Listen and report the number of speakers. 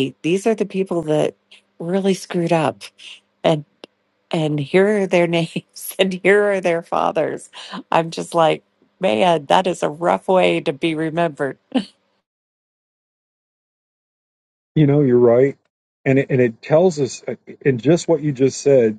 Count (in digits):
2